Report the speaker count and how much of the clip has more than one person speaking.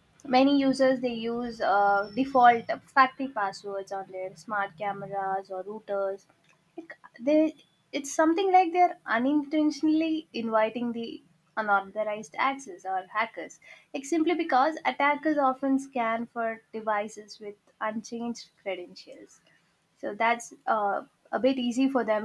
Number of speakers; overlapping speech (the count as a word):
one, no overlap